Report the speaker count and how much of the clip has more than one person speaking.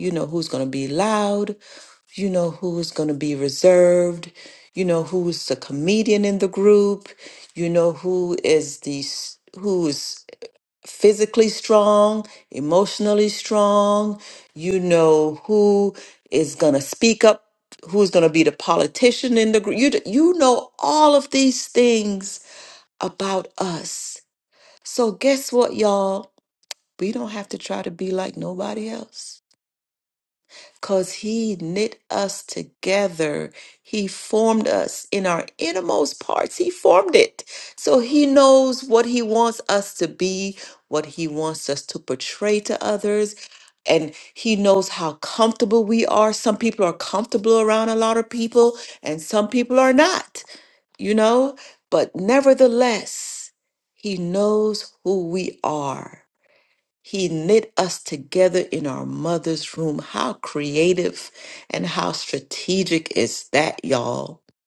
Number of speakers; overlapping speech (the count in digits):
1, no overlap